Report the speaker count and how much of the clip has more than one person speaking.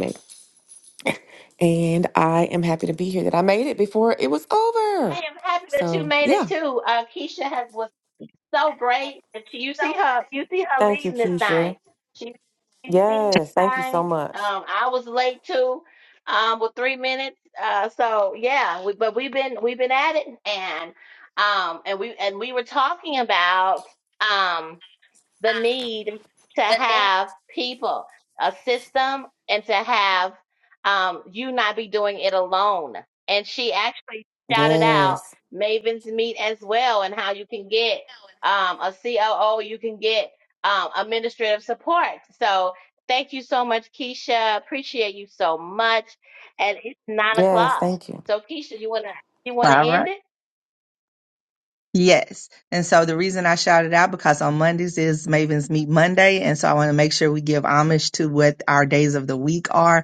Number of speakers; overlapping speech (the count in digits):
3, about 9%